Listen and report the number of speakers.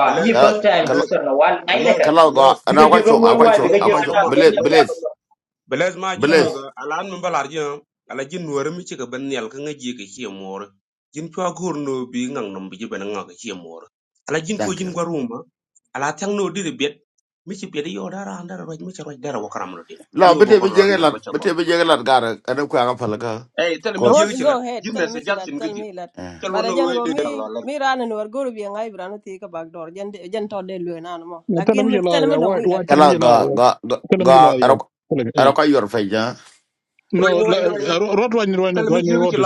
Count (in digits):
5